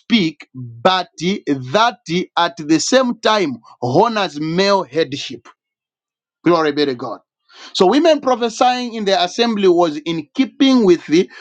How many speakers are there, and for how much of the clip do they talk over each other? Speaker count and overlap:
1, no overlap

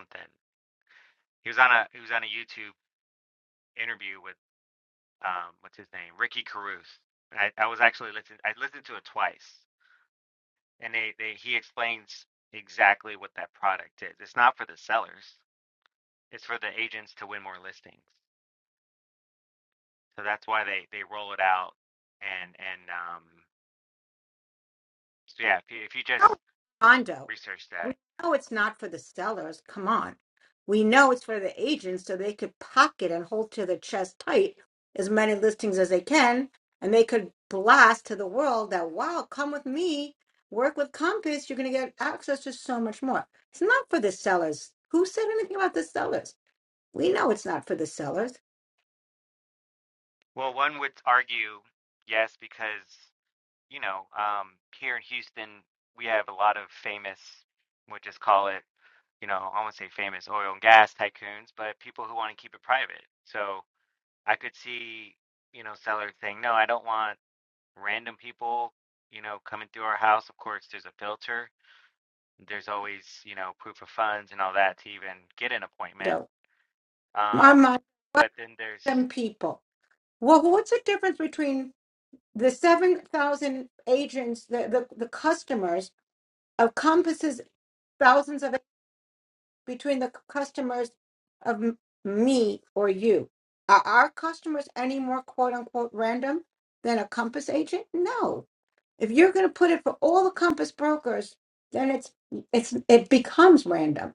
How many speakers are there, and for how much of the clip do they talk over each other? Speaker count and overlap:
2, about 1%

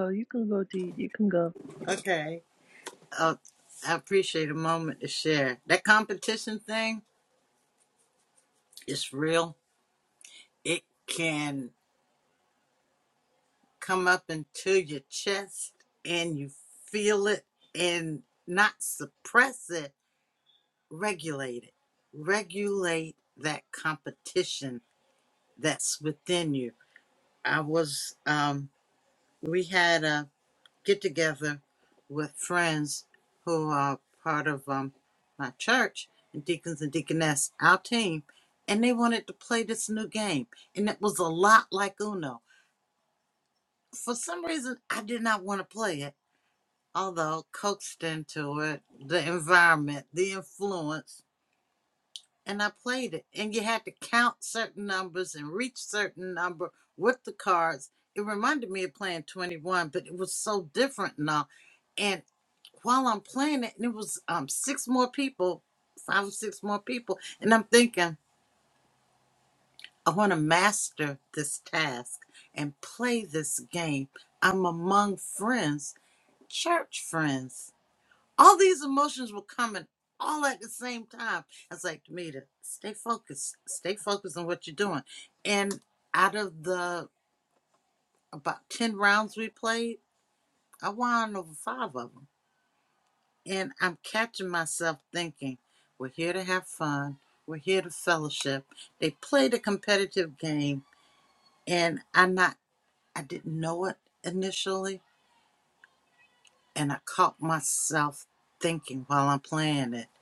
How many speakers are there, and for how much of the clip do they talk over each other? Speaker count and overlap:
2, no overlap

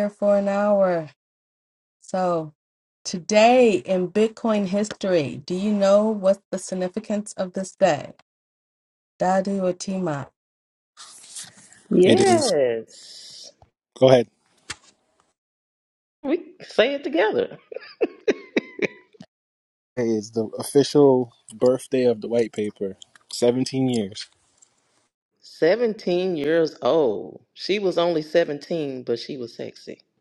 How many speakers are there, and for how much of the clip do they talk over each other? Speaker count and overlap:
3, about 2%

